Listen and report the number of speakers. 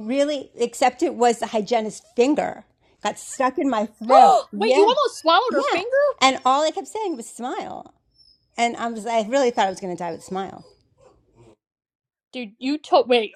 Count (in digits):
2